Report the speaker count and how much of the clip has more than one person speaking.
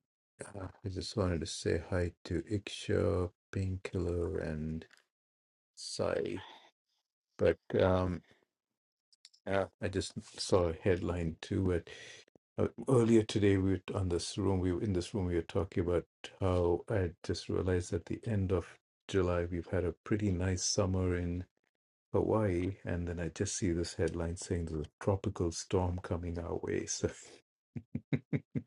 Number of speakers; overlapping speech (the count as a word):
one, no overlap